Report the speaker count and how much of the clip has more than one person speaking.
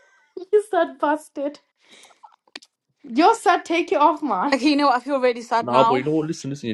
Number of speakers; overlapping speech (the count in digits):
3, about 7%